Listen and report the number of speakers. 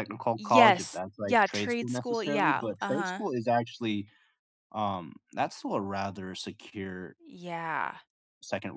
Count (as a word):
two